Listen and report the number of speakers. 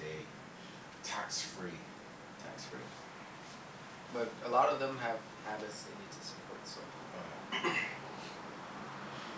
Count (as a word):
two